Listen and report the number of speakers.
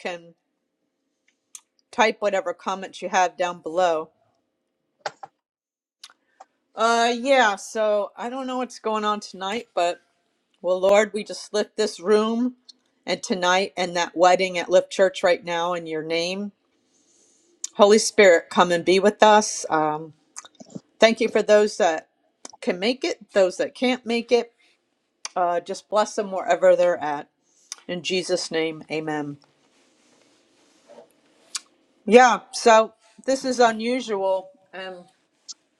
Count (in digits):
1